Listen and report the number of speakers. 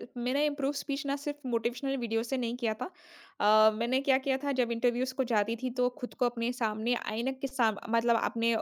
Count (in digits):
1